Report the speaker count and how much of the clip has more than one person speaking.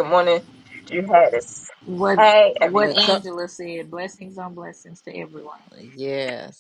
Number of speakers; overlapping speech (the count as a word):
three, about 11%